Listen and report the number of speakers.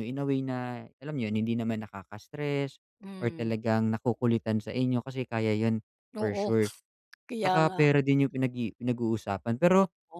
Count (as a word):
two